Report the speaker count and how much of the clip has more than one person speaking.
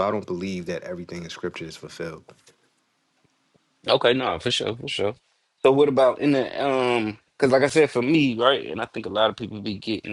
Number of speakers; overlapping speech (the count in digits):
2, no overlap